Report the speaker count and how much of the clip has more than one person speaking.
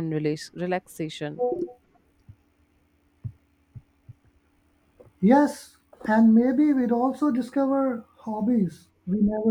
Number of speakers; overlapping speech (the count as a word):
two, no overlap